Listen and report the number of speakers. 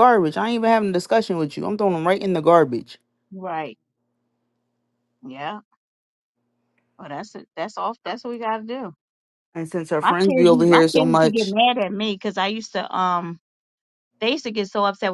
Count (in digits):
2